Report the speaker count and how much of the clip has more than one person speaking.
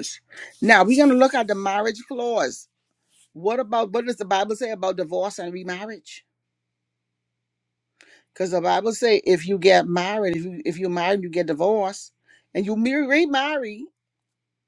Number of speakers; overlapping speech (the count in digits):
1, no overlap